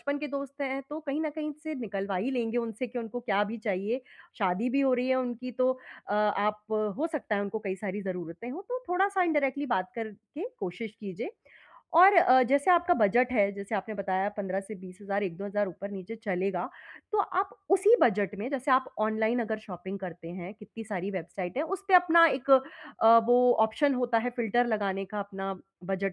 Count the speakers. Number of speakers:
one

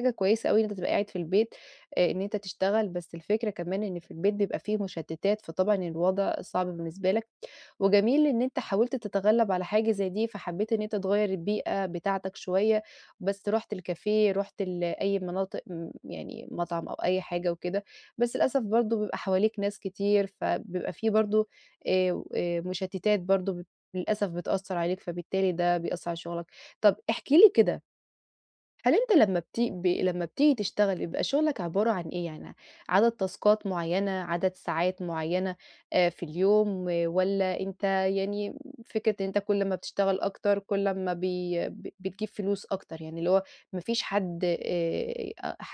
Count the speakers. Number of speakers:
one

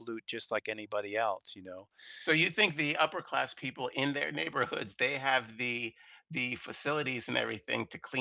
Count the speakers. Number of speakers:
two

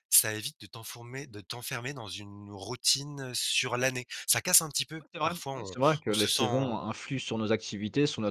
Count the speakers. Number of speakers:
two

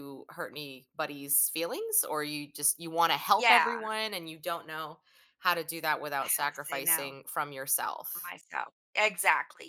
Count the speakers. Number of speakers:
two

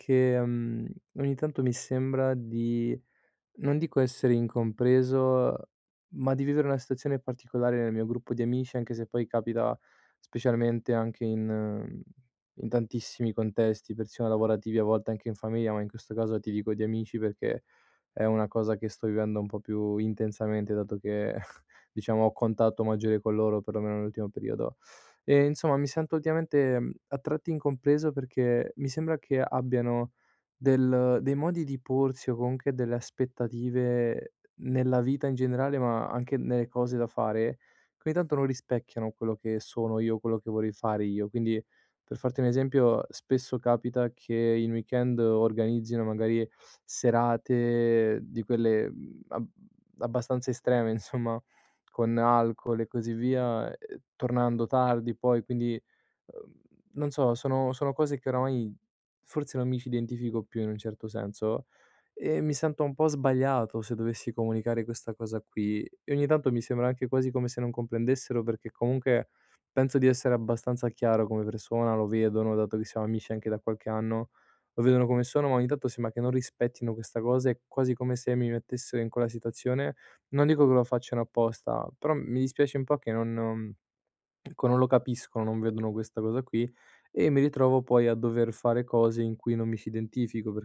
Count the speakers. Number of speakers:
one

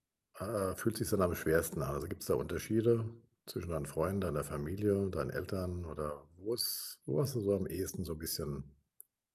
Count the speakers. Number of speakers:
one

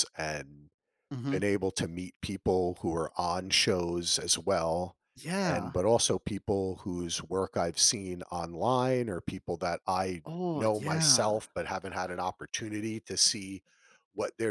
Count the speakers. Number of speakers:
two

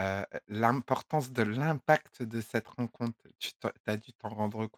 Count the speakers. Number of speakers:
one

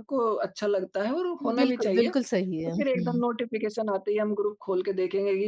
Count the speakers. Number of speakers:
two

